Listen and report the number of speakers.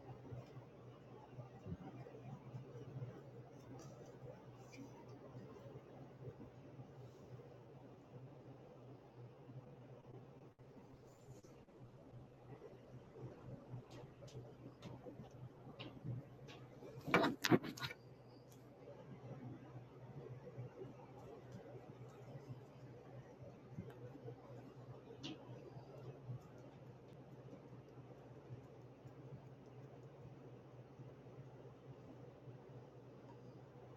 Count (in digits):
0